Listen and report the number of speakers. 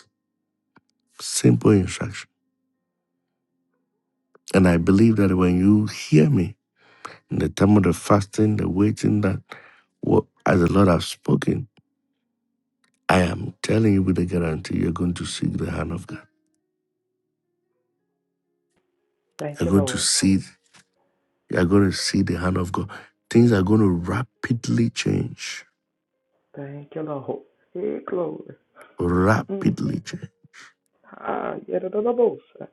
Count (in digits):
2